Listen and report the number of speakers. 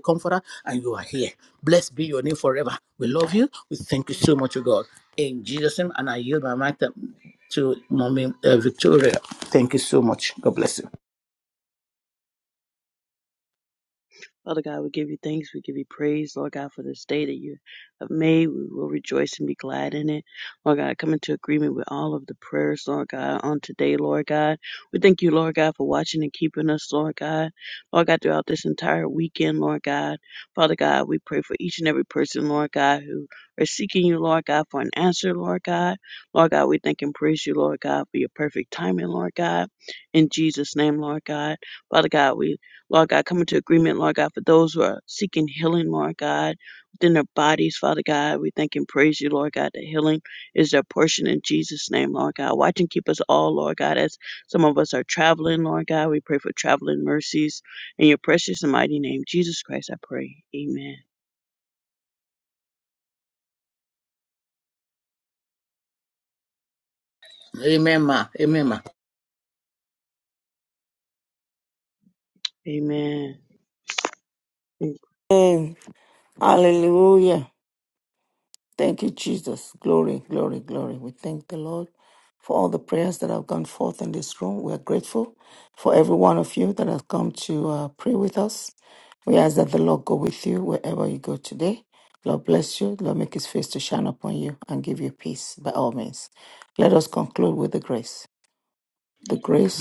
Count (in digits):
3